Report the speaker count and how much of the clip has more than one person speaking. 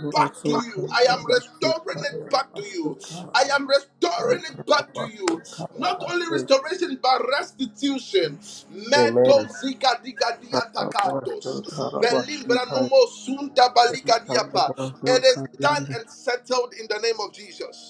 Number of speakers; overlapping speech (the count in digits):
2, about 48%